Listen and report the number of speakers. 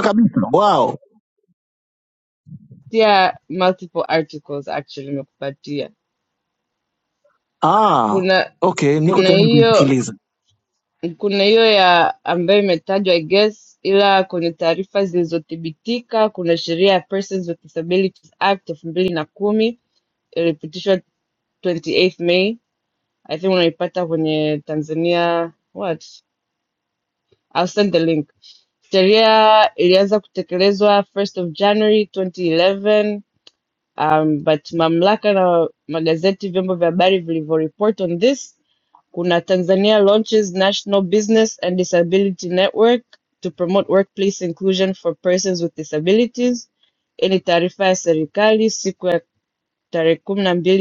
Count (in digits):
2